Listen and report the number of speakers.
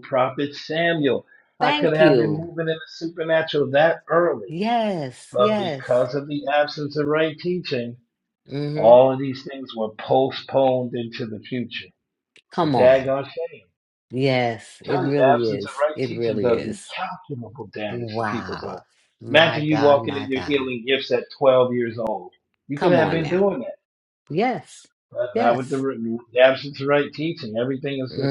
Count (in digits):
2